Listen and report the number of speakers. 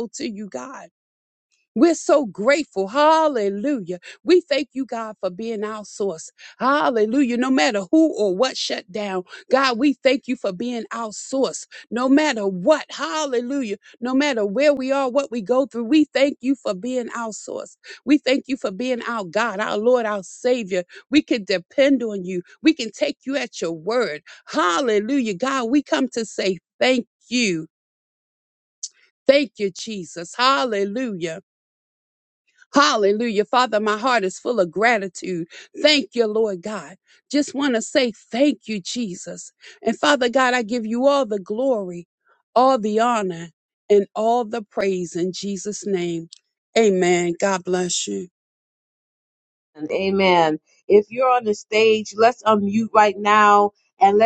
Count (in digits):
2